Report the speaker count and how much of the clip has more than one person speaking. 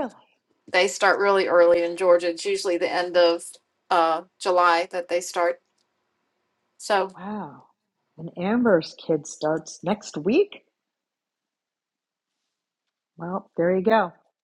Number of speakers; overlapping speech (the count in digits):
2, no overlap